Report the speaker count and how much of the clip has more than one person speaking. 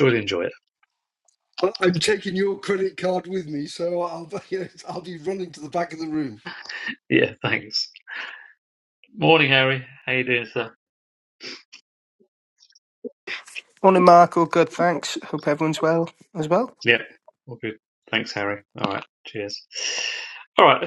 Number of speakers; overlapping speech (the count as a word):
three, no overlap